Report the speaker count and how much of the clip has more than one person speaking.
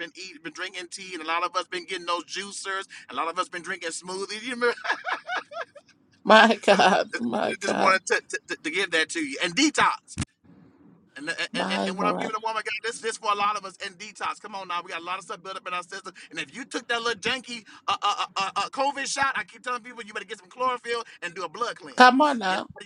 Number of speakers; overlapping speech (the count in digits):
2, about 7%